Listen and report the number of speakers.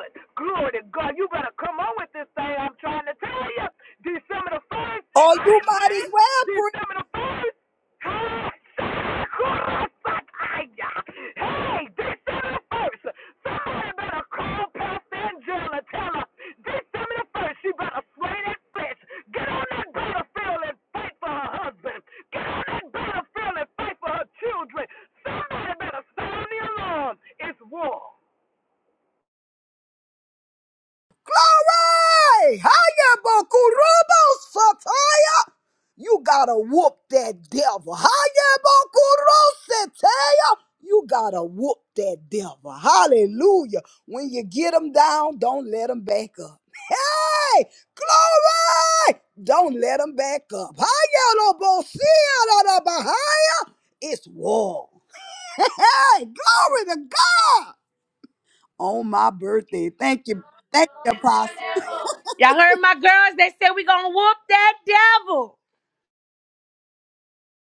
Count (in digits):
3